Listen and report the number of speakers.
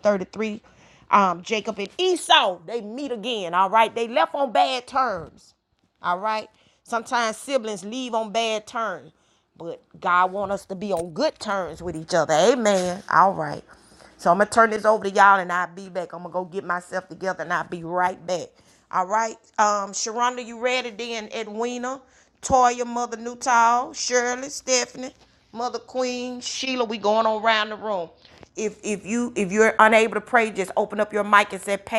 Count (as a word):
one